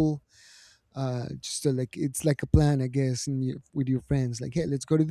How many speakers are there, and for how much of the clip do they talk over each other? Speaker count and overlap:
1, no overlap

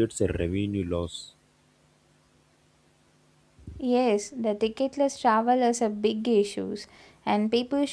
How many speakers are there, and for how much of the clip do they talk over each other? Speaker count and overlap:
2, no overlap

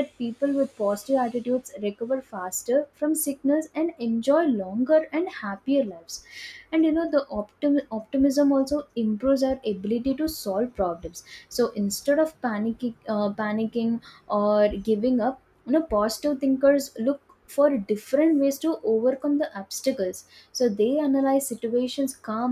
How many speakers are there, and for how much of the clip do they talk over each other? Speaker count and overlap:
1, no overlap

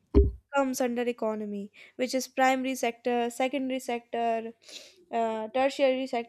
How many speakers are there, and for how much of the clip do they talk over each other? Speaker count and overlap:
1, no overlap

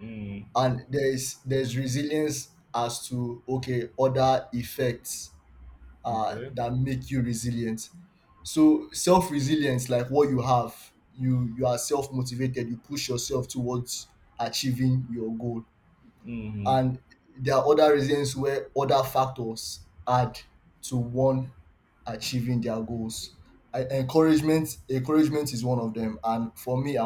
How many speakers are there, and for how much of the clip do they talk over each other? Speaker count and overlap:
2, about 2%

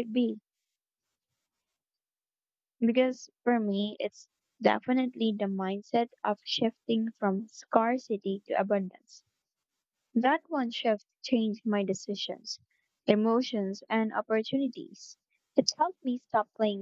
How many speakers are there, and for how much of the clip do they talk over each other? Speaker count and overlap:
1, no overlap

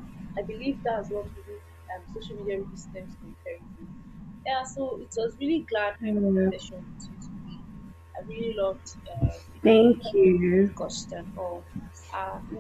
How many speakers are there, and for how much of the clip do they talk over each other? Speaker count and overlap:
2, about 1%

